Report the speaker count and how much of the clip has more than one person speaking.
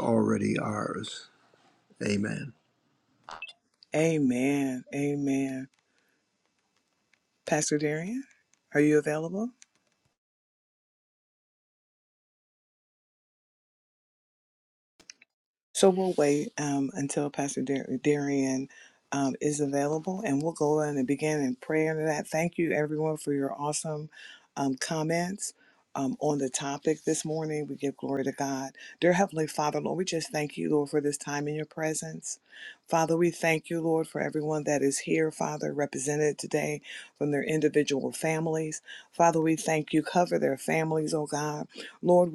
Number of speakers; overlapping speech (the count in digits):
2, no overlap